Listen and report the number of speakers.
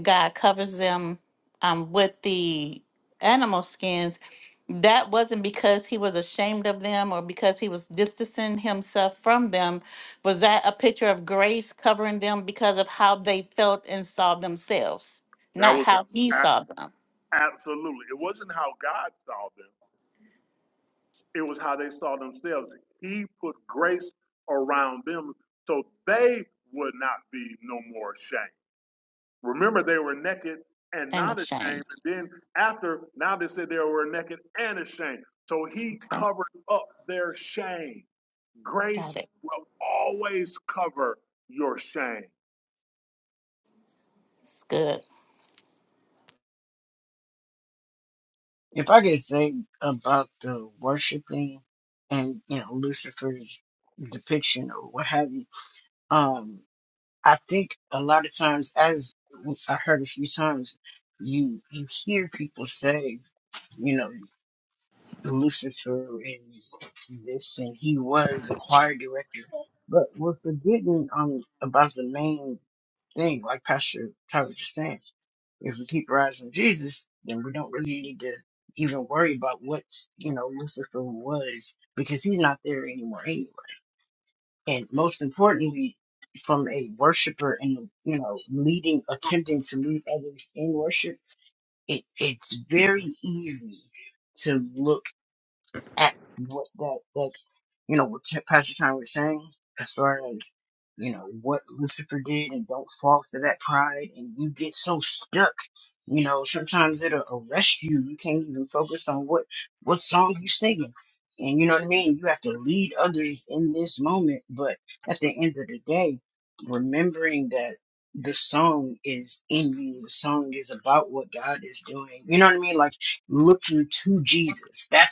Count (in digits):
3